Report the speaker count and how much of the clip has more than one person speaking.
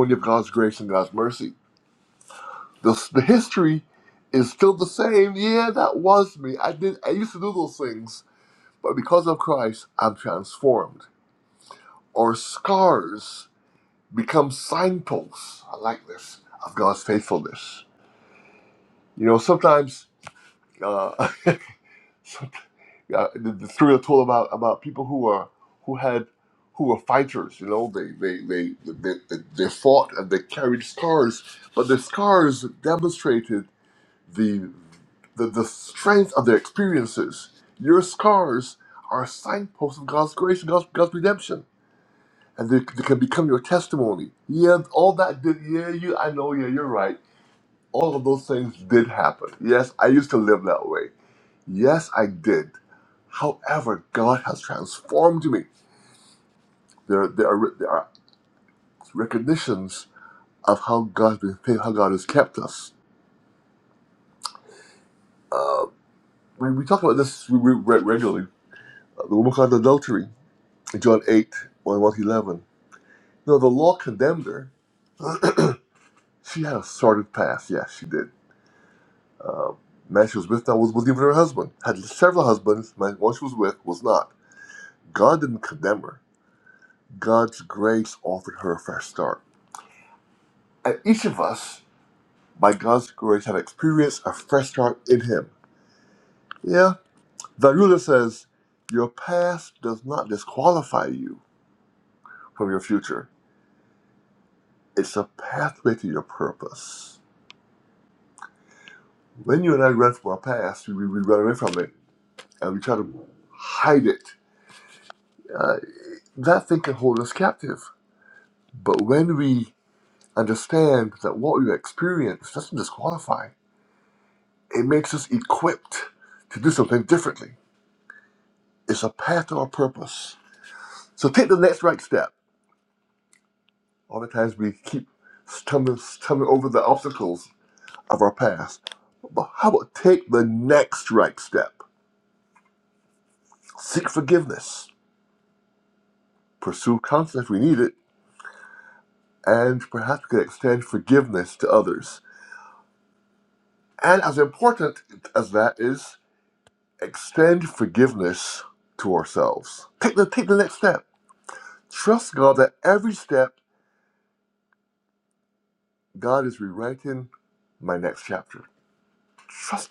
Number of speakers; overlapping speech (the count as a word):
one, no overlap